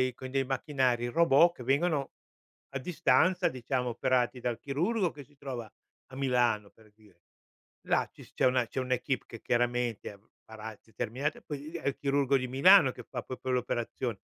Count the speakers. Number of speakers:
one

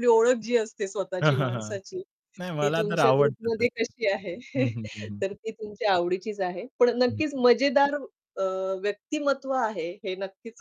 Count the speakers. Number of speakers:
two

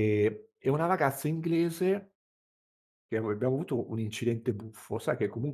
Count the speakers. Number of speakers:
one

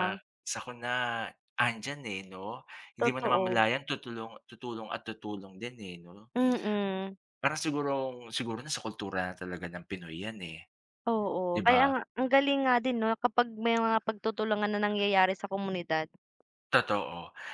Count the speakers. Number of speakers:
two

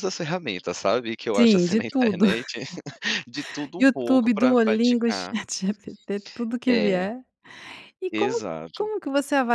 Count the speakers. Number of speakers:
two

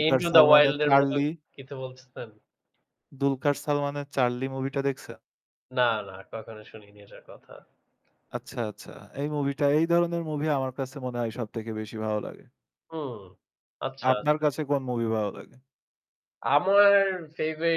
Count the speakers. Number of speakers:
two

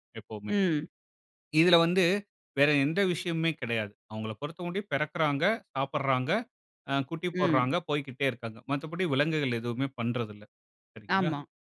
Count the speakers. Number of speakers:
two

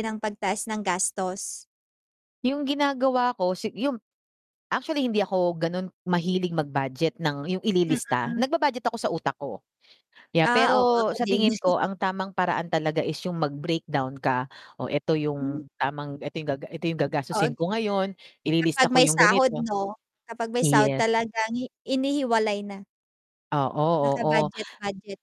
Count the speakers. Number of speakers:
two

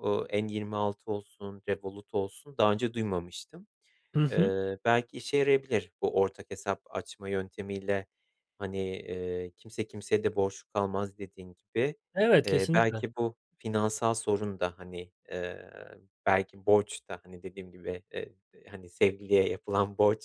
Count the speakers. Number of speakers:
two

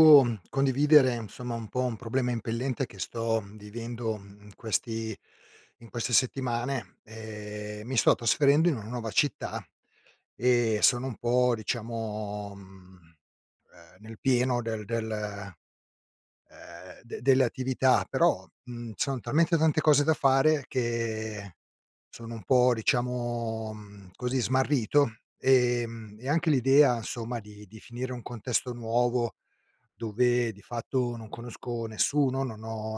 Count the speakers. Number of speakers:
one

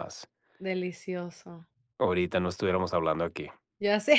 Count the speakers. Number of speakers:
two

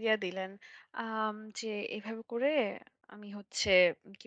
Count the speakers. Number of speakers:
one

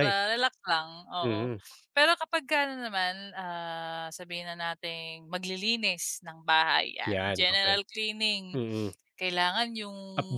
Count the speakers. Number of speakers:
two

